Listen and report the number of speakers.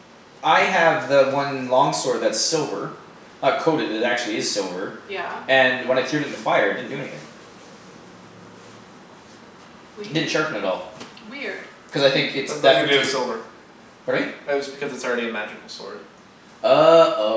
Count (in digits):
3